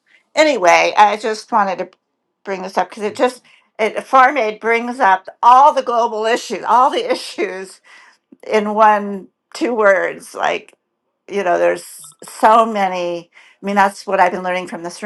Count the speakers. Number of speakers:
1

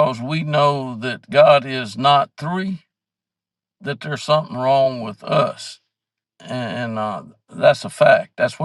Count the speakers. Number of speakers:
1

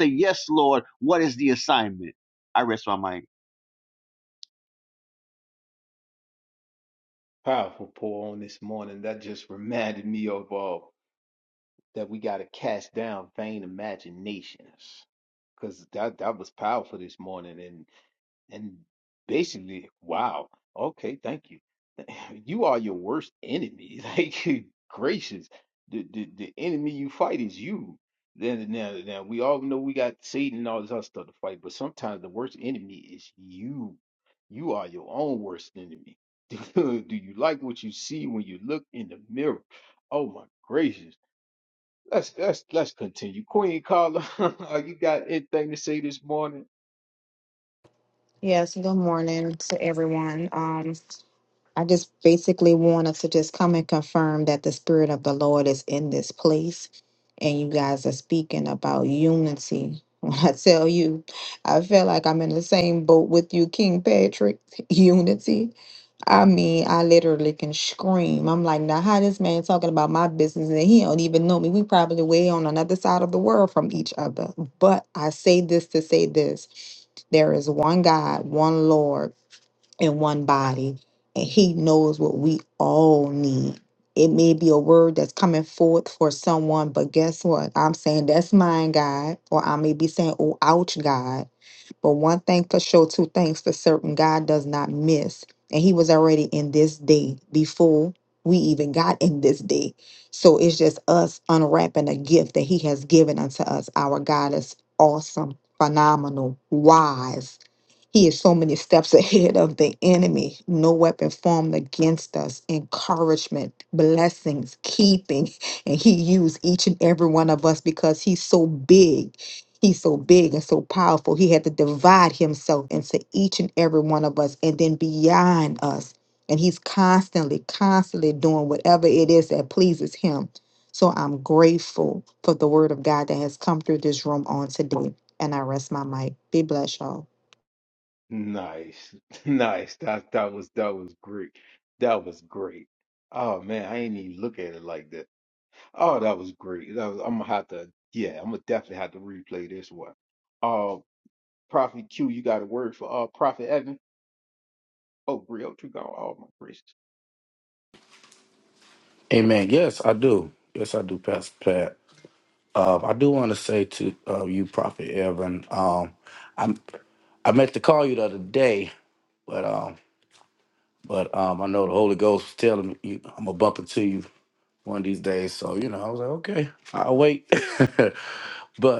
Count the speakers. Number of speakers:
4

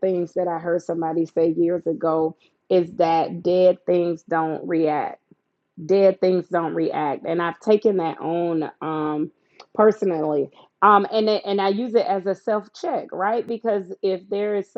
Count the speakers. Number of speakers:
1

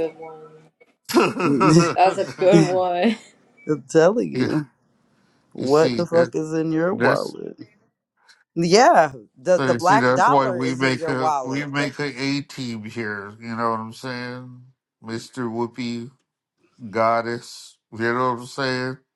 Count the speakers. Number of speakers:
3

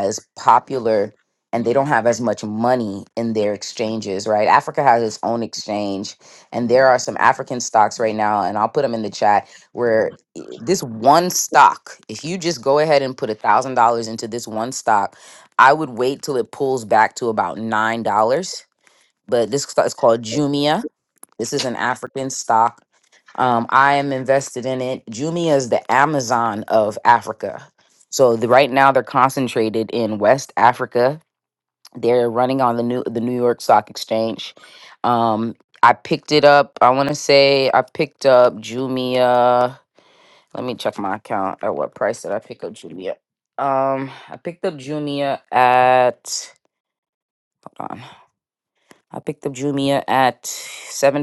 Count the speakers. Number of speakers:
1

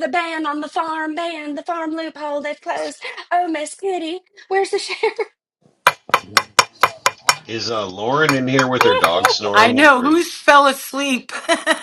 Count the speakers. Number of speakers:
3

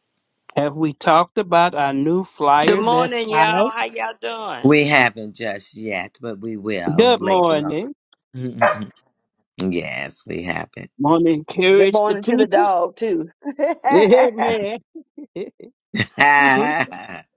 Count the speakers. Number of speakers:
4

